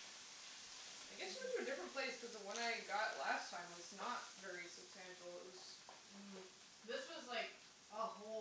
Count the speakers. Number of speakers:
two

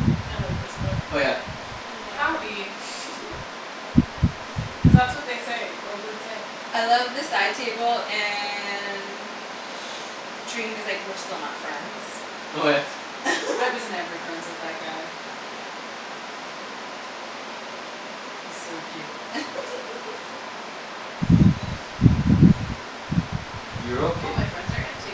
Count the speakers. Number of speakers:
three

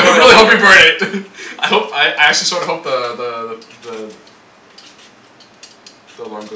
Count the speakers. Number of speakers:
two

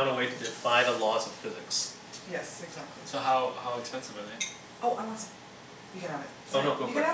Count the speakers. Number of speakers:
three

